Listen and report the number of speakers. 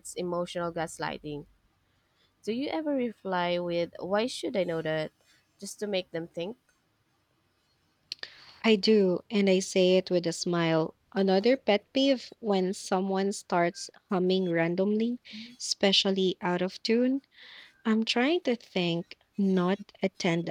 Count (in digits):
2